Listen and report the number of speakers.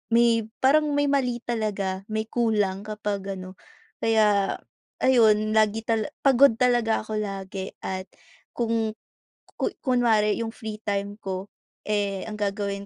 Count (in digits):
1